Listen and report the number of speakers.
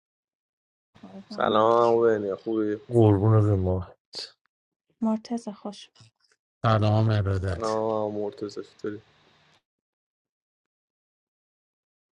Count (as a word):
four